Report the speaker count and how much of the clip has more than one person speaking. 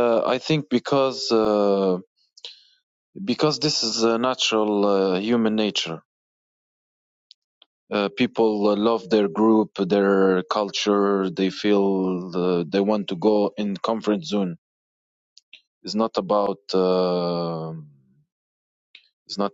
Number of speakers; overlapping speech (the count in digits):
1, no overlap